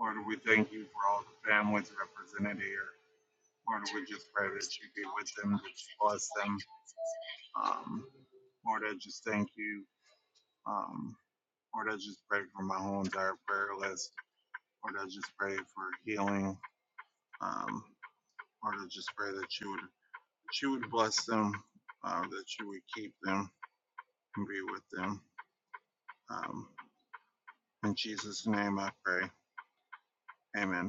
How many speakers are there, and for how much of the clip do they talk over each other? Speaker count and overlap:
1, no overlap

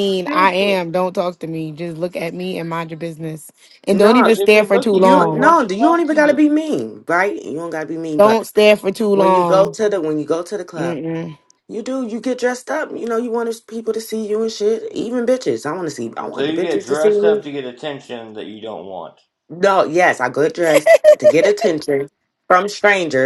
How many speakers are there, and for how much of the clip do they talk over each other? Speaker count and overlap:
3, about 23%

